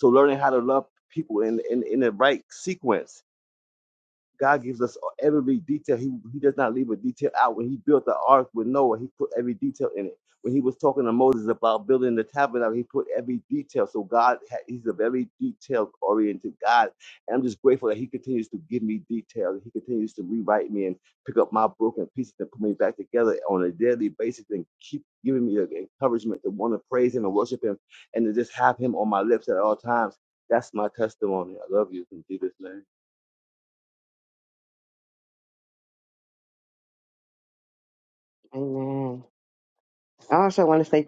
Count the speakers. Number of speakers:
two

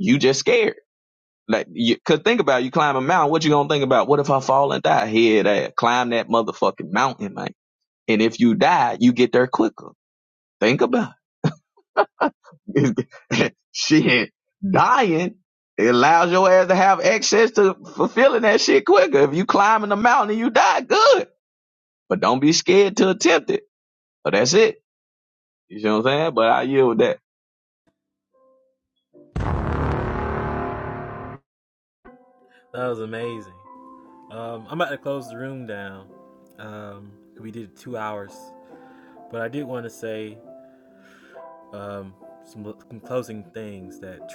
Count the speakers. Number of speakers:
two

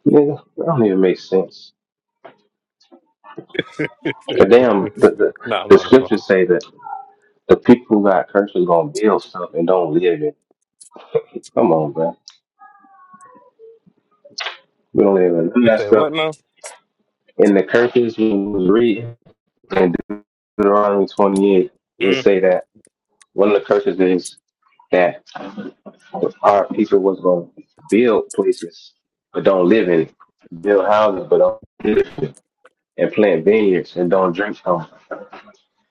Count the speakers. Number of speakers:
two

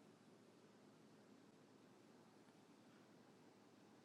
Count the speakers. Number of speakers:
zero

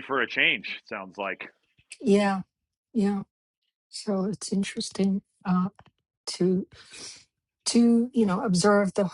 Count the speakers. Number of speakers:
two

